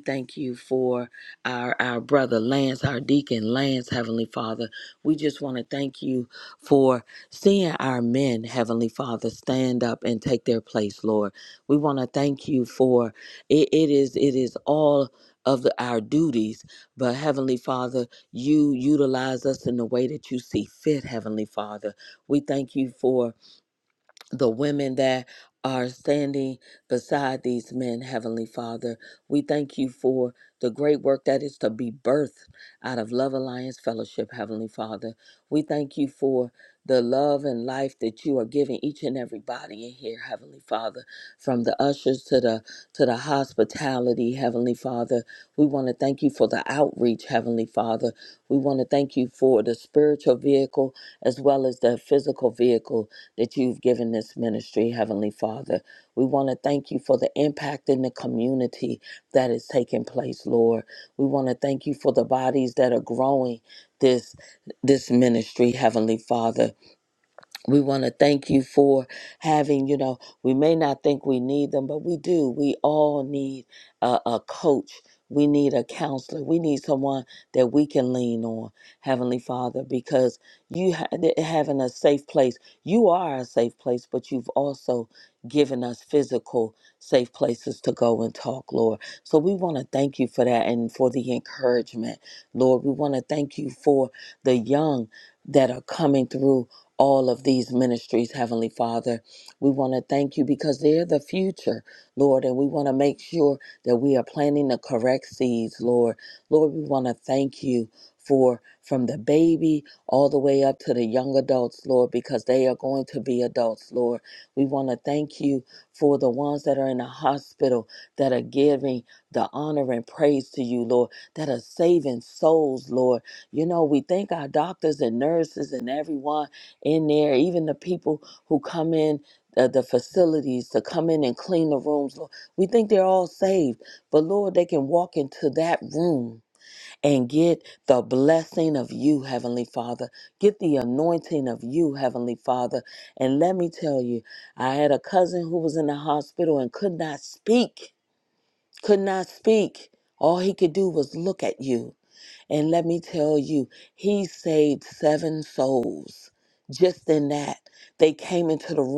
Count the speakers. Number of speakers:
1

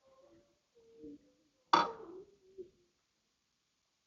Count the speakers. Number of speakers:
0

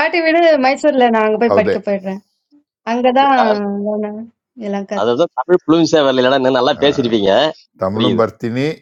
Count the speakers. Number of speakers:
3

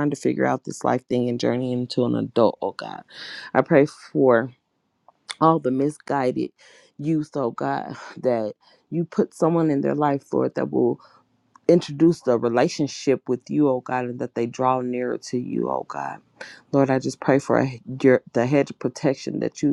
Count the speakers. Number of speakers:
1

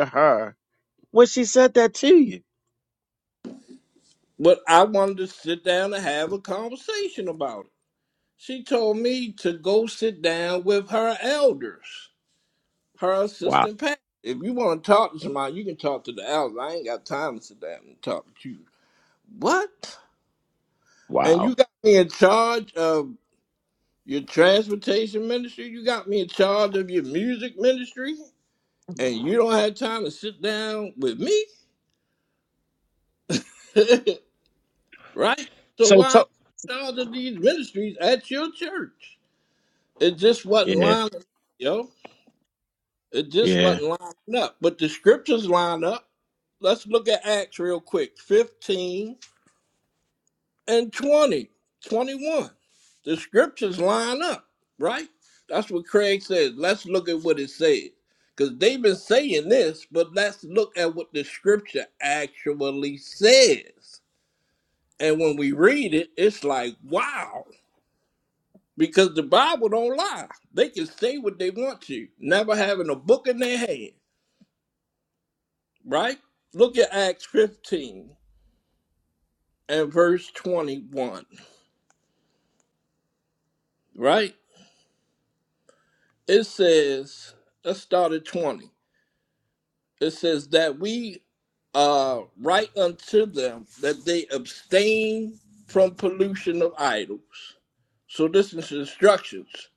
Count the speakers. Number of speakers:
2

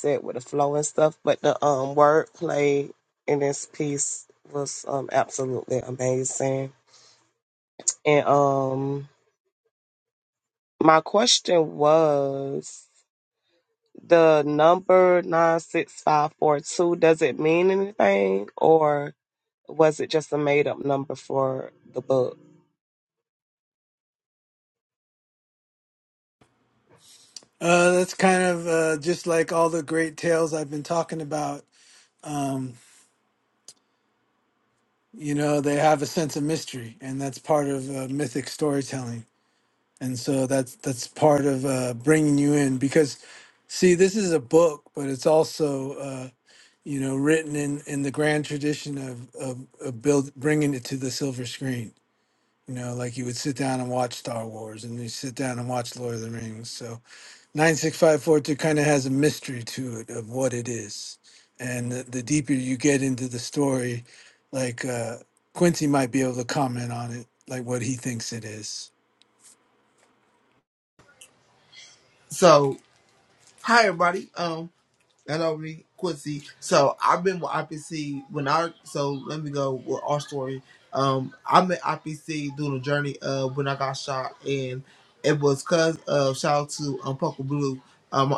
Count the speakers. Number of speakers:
3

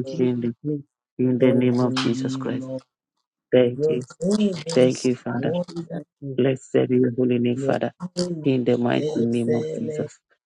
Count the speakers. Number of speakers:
3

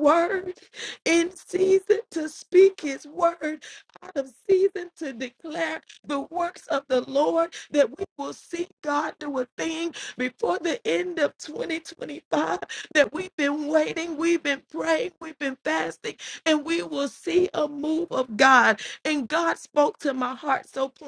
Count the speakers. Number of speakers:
1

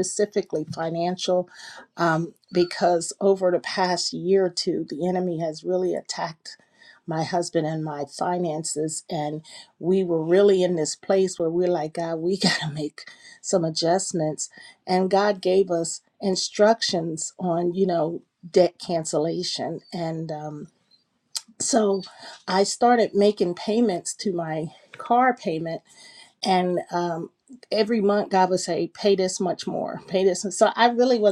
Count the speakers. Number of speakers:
1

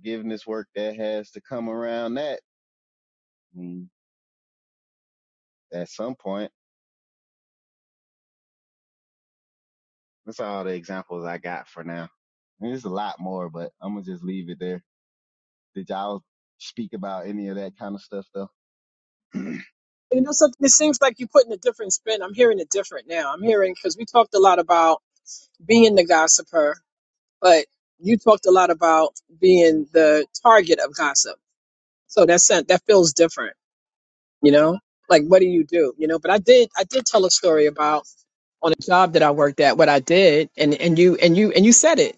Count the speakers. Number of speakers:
2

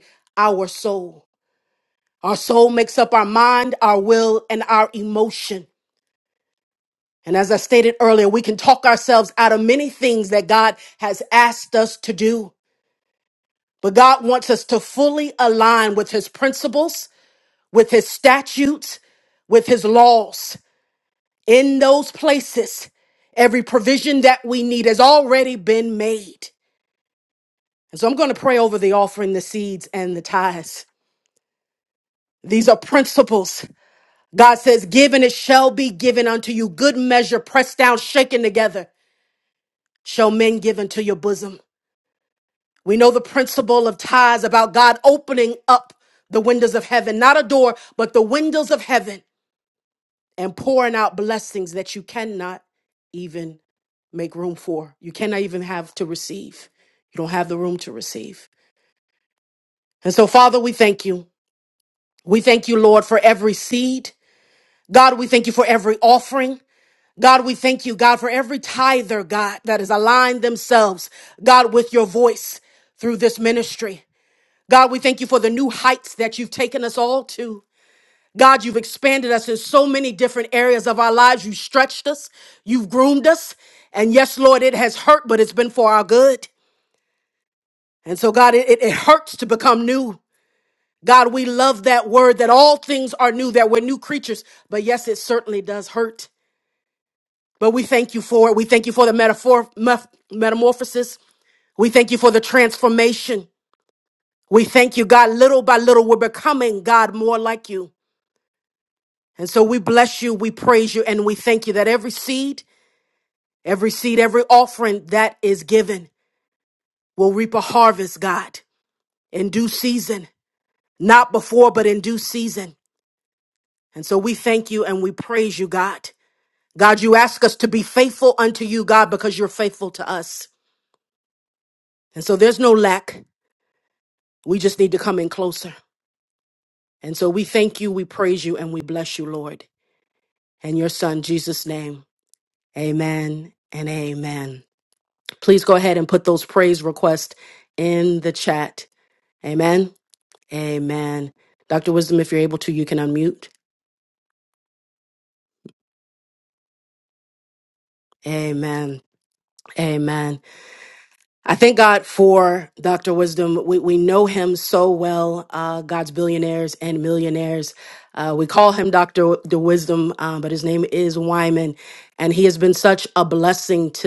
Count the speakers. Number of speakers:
1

